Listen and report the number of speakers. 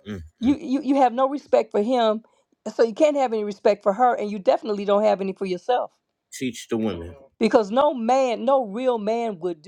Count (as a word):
two